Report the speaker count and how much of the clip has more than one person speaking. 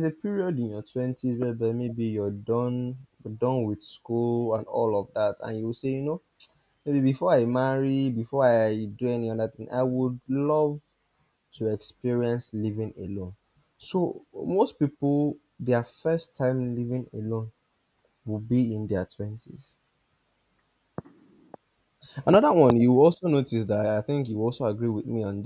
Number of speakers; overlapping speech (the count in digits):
1, no overlap